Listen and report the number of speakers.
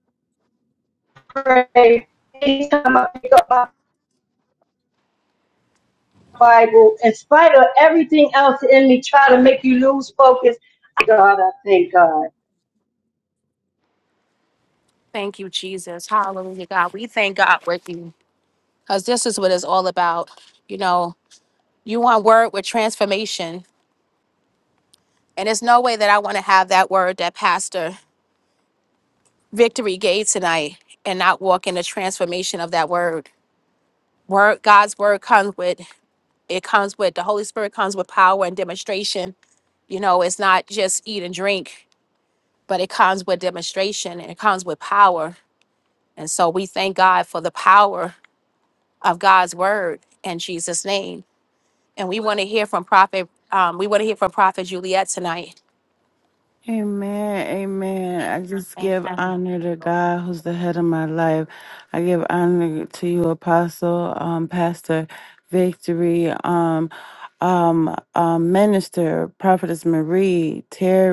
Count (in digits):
3